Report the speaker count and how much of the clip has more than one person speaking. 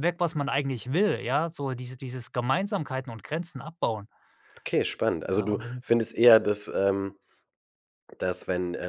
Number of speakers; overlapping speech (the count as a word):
two, about 7%